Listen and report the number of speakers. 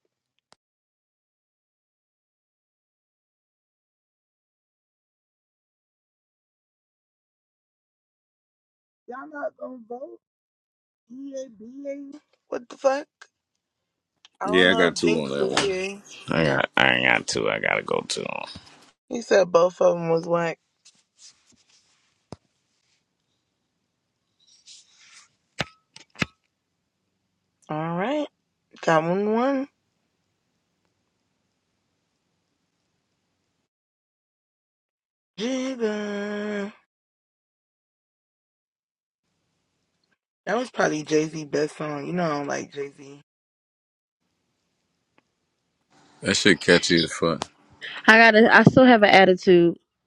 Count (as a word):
three